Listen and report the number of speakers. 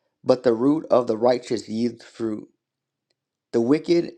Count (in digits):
1